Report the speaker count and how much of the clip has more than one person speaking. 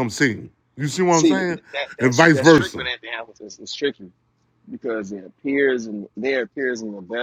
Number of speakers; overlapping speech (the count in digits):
2, about 17%